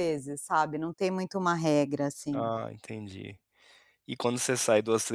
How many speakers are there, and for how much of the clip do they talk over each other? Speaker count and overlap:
2, about 3%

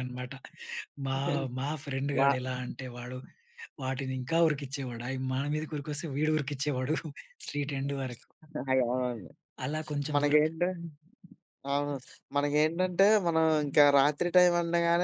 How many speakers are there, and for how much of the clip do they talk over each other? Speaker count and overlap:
2, about 3%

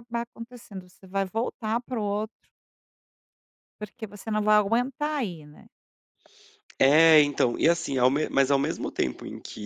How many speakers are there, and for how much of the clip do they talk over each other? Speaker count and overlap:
2, no overlap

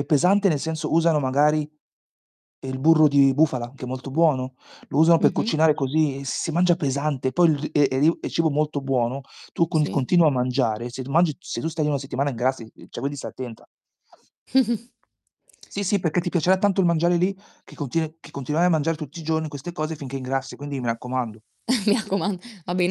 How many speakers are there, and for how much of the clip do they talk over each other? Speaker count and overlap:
2, about 2%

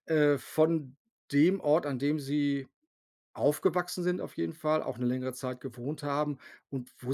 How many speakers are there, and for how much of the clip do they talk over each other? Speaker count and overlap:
1, no overlap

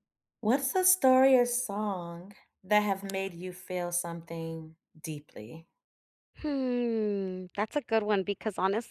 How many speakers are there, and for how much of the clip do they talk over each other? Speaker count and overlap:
2, no overlap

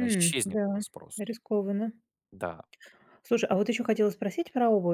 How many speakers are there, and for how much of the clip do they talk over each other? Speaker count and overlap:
2, about 19%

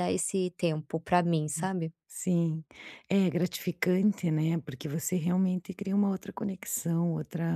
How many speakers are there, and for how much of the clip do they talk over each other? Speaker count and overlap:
2, about 1%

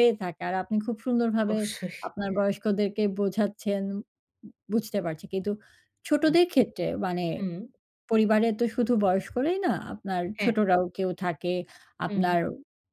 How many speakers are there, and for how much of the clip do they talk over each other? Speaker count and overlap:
2, about 5%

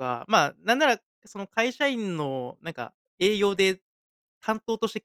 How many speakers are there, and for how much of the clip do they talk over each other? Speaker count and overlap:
1, no overlap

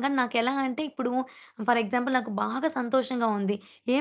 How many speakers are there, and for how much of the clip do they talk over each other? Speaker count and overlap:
1, no overlap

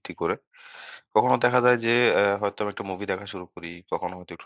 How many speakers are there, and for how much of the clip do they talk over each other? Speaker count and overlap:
1, no overlap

